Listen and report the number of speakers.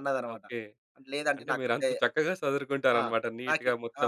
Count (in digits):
2